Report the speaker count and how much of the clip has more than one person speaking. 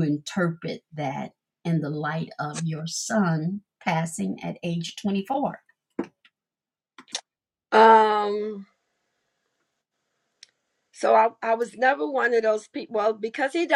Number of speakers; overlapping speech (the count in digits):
2, no overlap